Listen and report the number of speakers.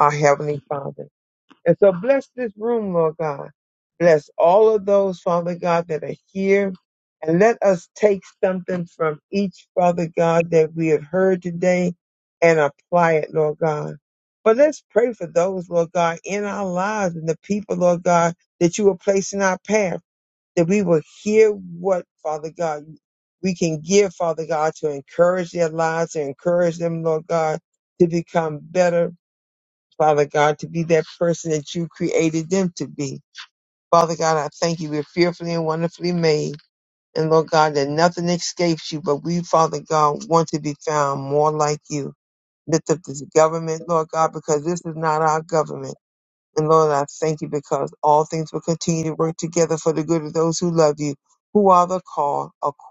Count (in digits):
1